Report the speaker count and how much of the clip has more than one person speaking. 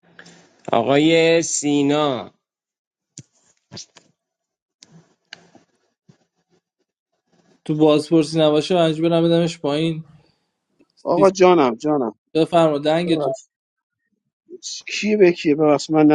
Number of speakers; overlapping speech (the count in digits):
3, no overlap